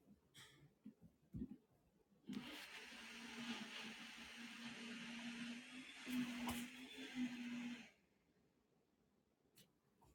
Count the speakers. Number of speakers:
zero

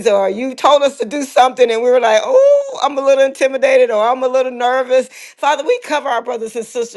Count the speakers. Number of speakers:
one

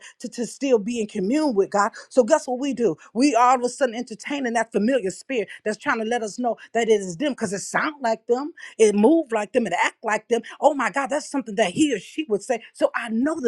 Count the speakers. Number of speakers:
one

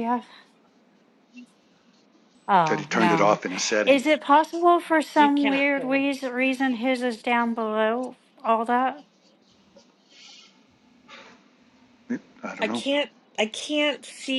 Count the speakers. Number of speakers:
three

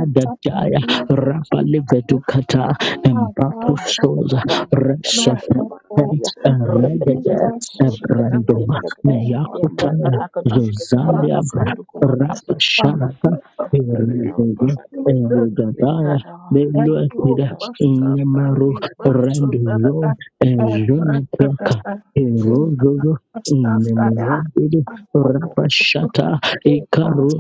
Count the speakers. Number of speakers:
three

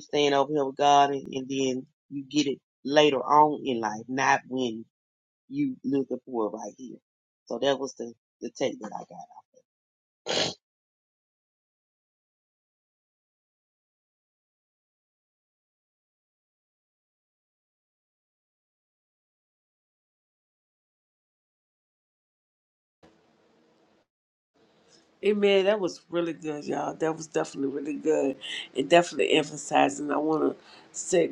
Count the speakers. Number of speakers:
two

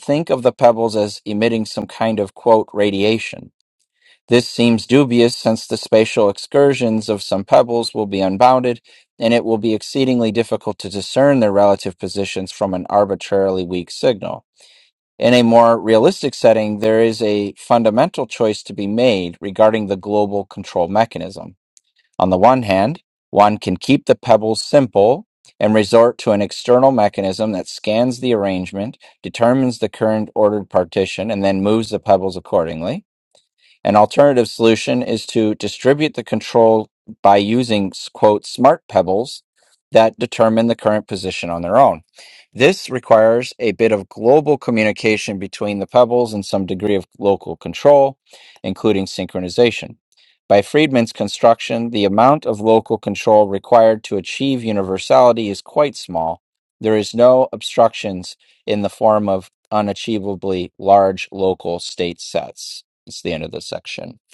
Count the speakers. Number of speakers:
one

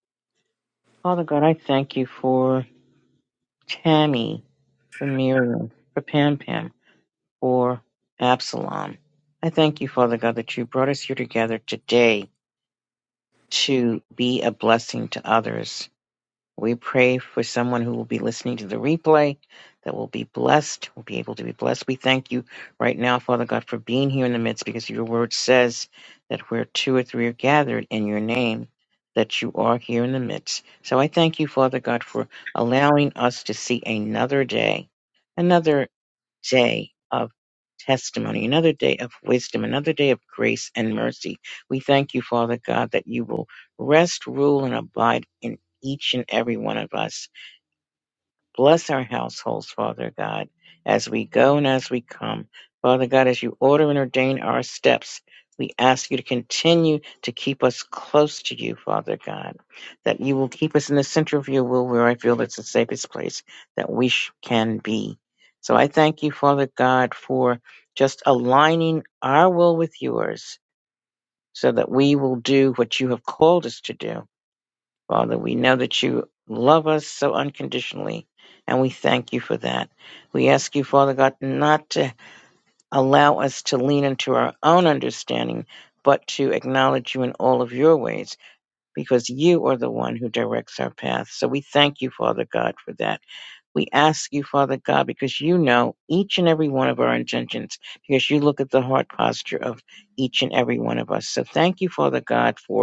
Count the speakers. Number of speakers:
one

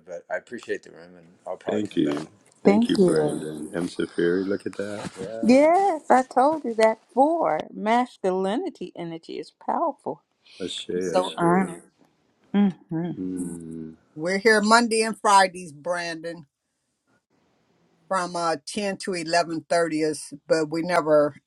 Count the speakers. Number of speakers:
four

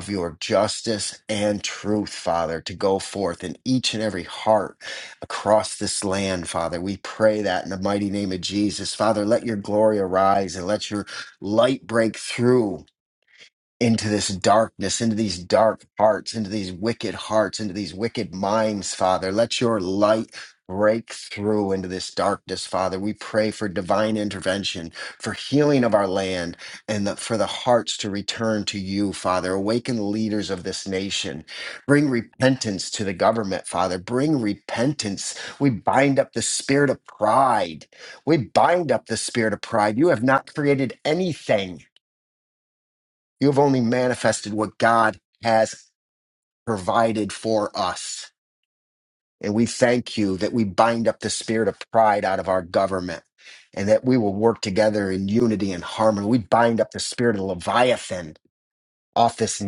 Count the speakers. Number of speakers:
one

